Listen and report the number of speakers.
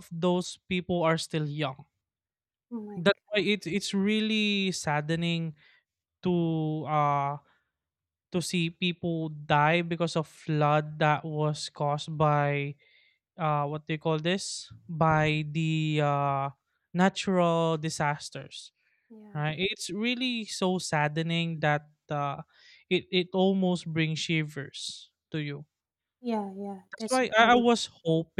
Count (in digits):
2